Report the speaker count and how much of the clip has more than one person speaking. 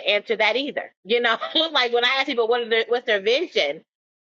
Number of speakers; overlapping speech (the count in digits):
1, no overlap